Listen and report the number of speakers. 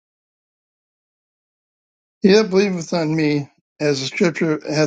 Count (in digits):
1